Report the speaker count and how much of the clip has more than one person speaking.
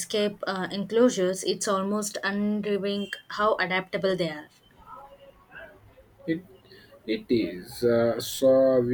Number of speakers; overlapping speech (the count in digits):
2, no overlap